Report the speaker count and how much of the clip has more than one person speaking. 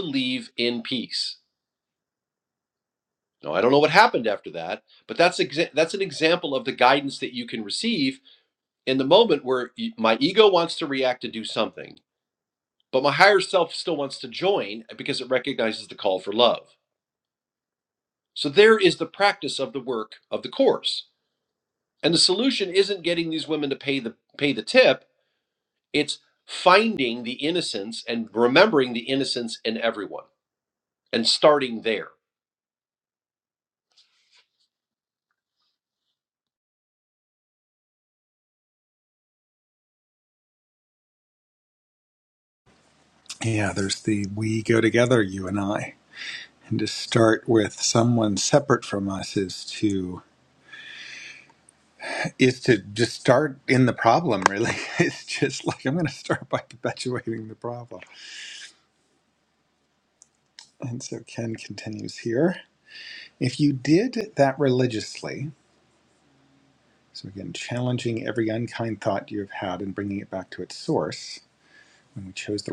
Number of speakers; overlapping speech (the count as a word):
two, no overlap